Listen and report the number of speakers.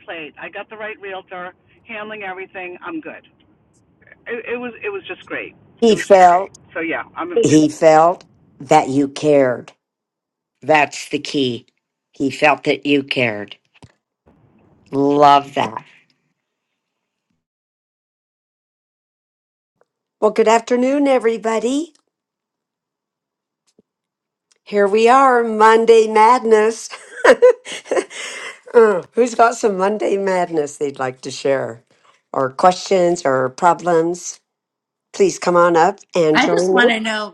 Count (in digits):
3